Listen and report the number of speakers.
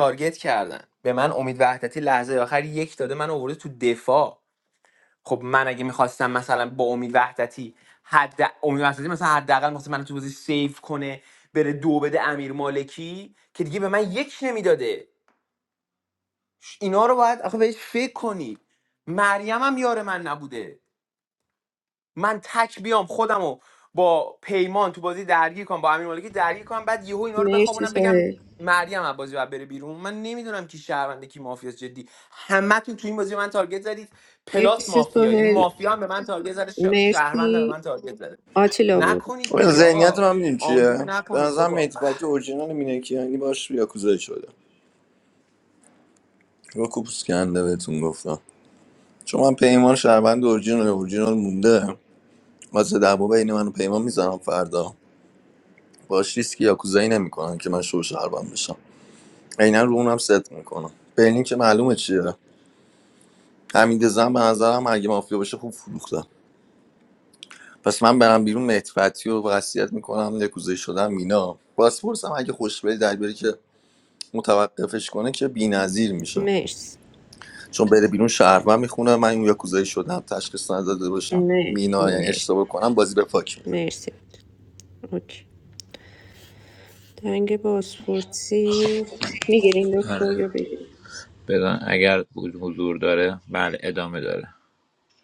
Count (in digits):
4